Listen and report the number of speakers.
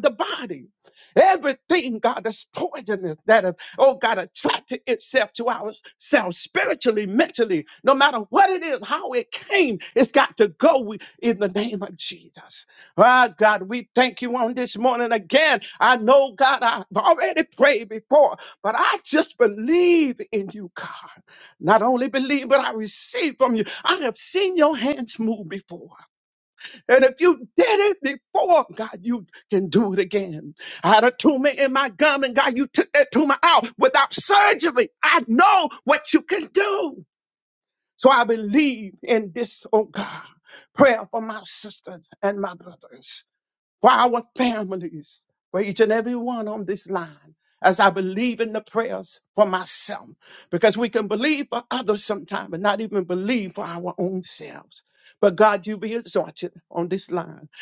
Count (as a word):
one